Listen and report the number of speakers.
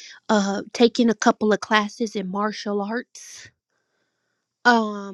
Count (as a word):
one